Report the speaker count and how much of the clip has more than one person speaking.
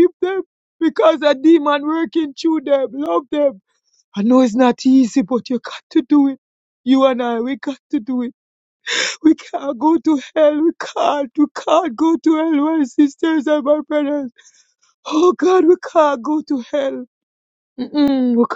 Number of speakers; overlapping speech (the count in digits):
1, no overlap